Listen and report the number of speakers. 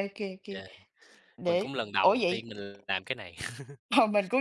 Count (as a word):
two